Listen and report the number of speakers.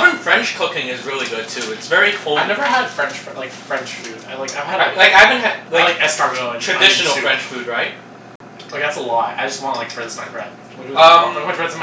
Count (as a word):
two